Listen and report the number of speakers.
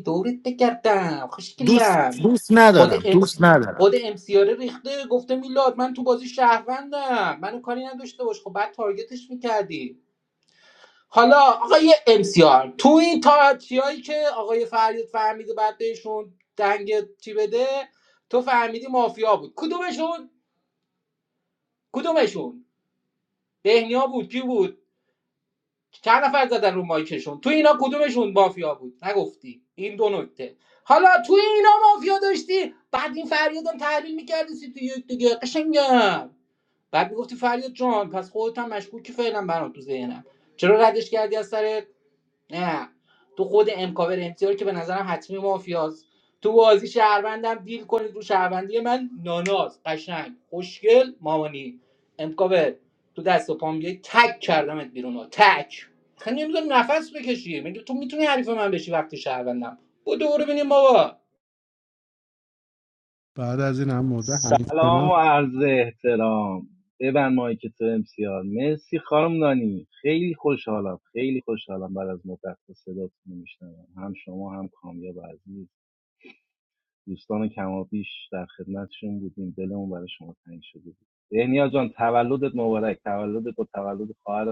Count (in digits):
4